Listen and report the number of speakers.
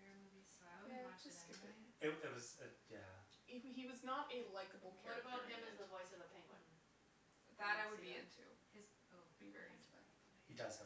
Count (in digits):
4